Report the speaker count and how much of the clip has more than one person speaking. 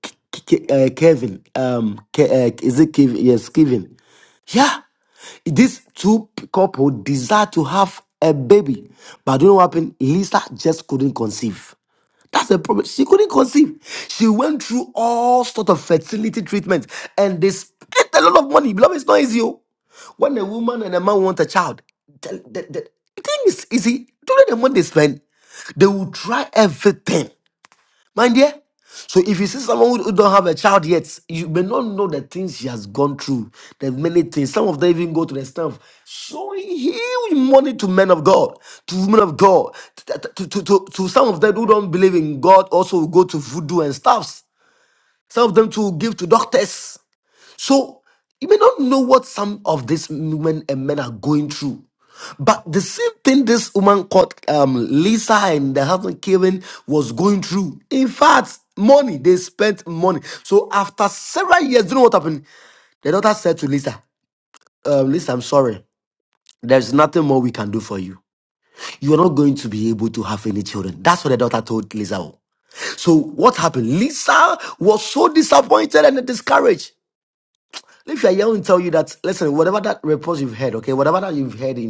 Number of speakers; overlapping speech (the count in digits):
1, no overlap